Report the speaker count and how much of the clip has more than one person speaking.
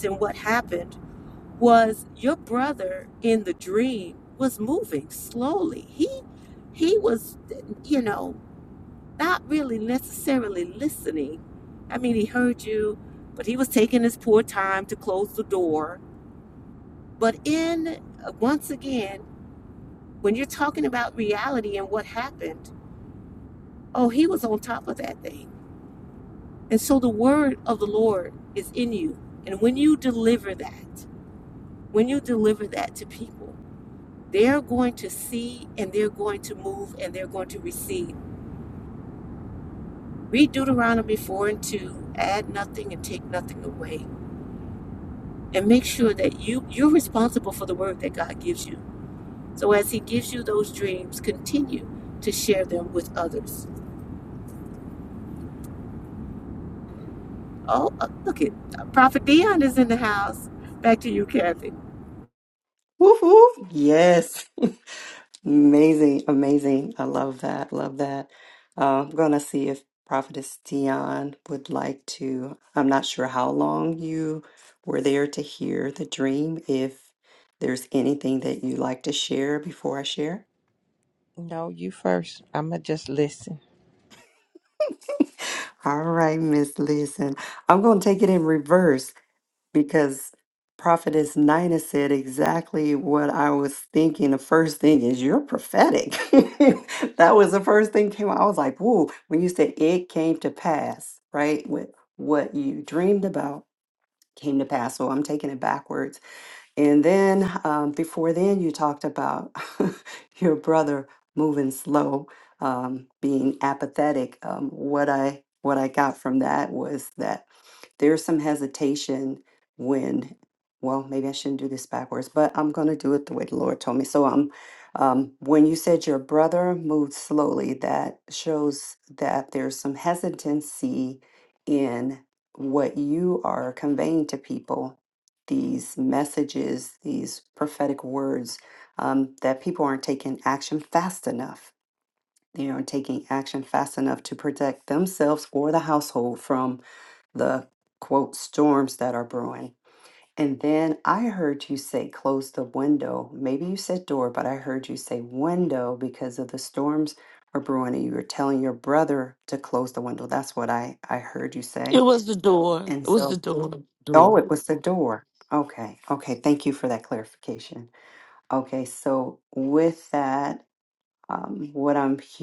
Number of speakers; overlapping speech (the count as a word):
four, about 1%